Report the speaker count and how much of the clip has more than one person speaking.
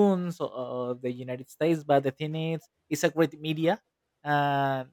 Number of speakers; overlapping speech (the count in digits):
1, no overlap